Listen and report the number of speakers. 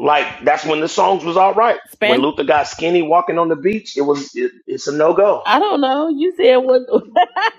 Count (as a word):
two